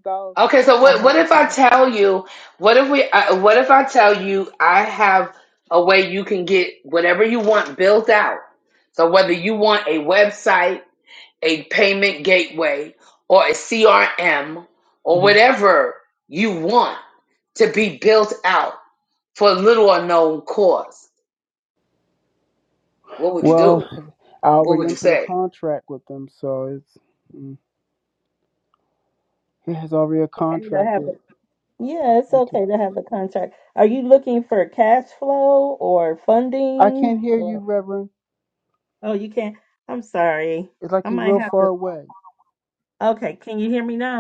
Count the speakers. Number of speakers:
3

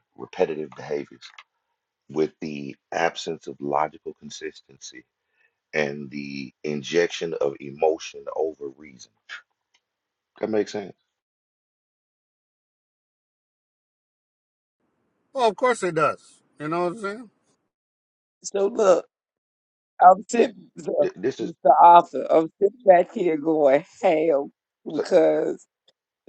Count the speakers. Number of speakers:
3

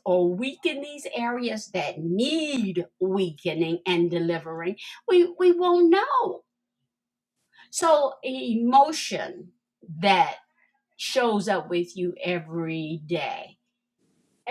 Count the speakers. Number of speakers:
1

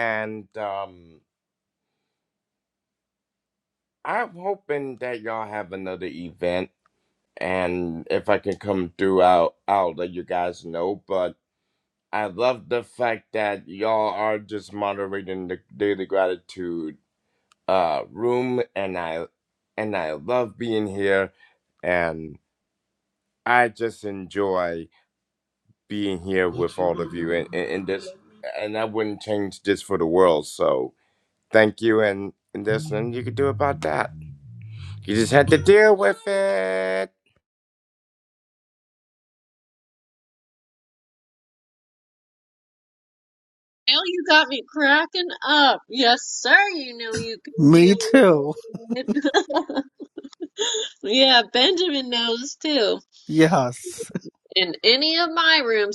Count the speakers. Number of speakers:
3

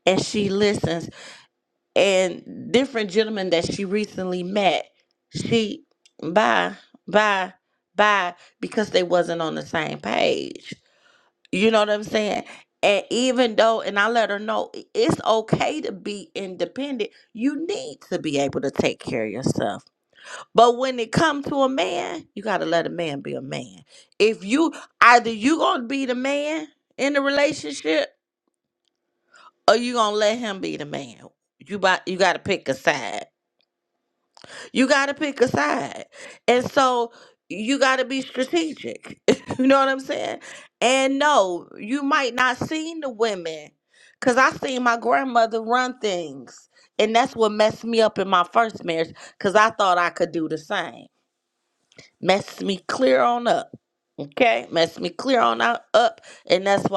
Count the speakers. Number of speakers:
1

